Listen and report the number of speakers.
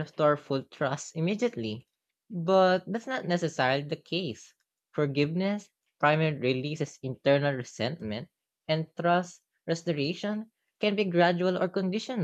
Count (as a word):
one